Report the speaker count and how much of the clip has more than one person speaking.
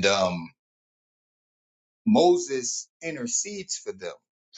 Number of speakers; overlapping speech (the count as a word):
one, no overlap